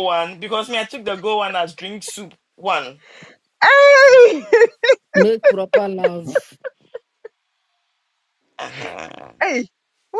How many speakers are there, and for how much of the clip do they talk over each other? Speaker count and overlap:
three, no overlap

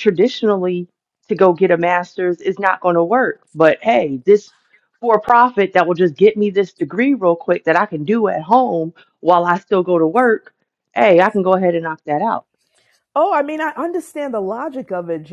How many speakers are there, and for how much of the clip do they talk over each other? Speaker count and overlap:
two, no overlap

